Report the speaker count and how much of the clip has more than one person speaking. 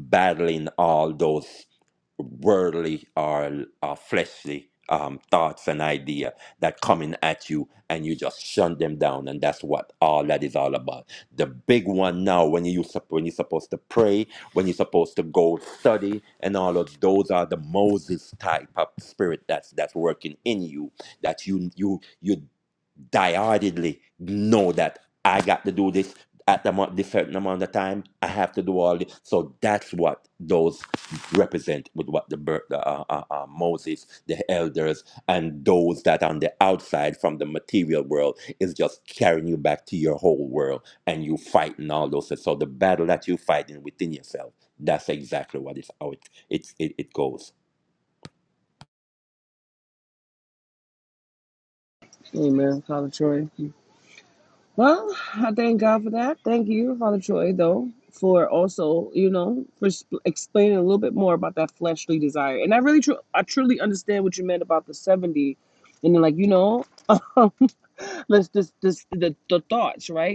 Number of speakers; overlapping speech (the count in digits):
2, no overlap